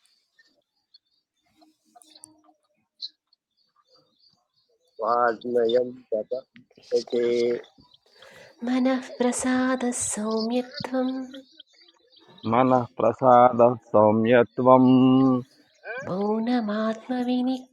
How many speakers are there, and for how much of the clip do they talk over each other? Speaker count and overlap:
three, no overlap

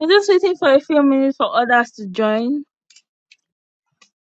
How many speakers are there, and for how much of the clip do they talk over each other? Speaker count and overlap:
one, no overlap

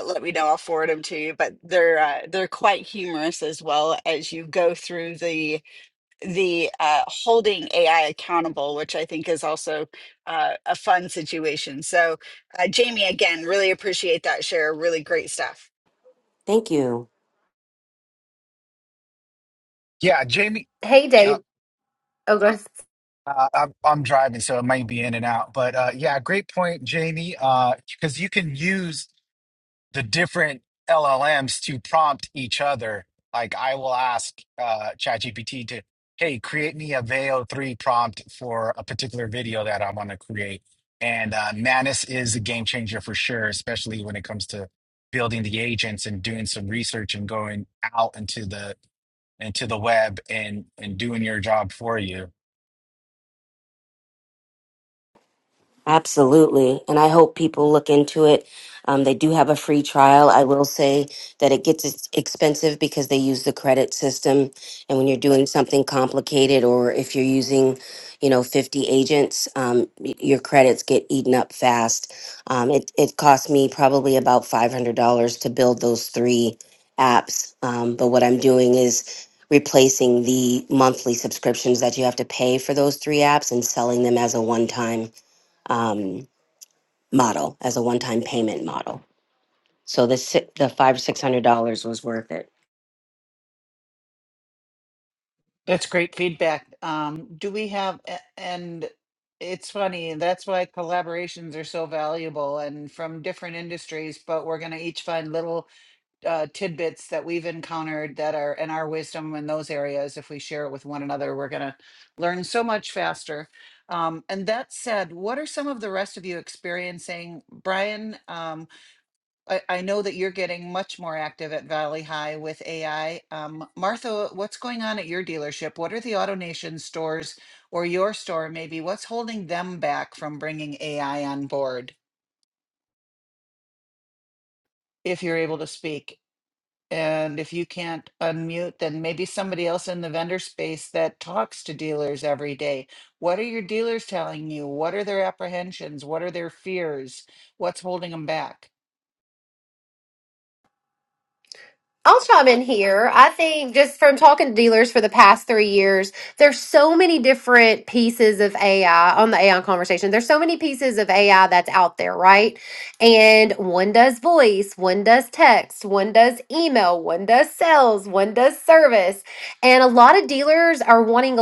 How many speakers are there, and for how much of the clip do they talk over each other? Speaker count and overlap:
five, under 1%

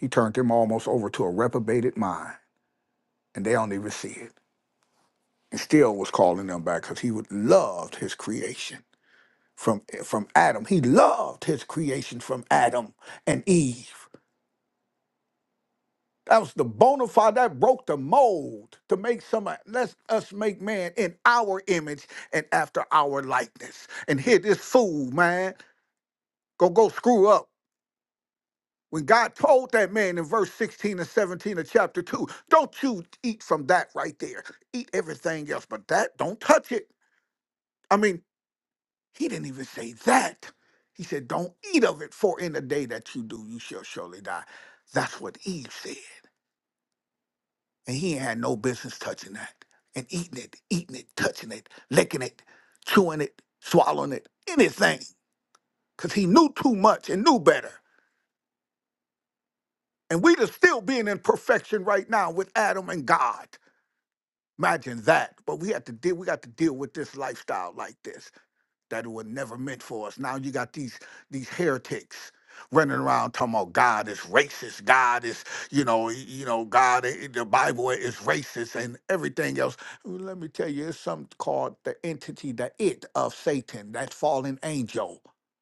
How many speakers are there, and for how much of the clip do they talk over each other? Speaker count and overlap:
one, no overlap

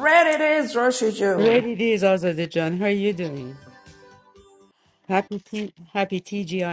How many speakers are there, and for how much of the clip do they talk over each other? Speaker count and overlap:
two, about 4%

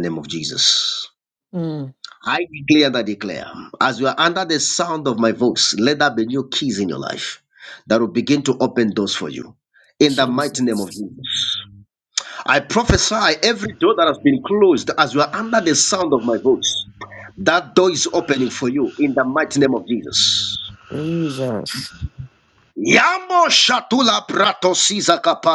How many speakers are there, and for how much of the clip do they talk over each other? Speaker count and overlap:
two, about 2%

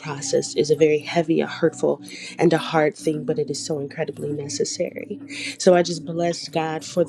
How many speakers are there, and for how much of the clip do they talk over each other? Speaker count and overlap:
one, no overlap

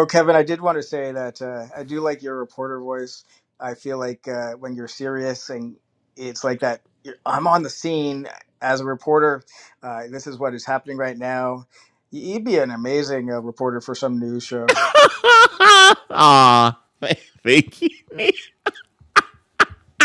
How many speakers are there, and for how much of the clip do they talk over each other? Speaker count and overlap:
two, no overlap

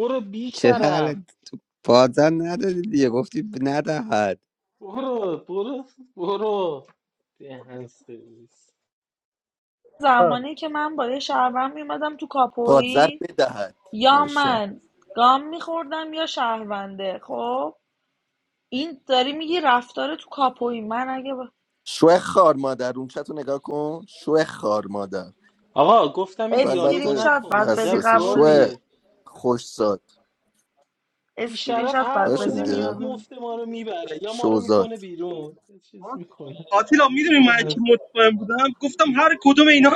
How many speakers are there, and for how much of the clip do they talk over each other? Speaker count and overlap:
five, about 15%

